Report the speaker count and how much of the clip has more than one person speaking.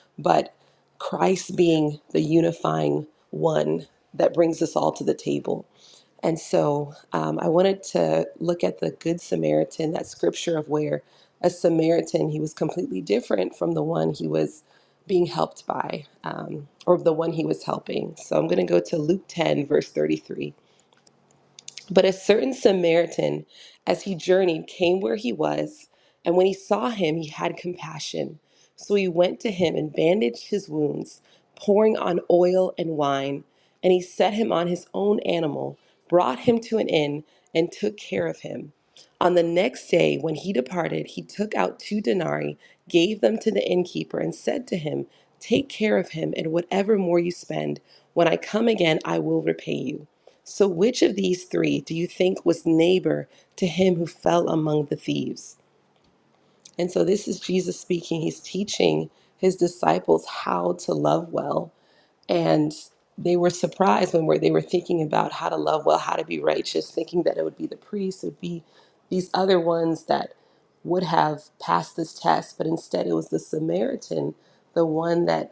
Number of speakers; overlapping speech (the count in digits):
1, no overlap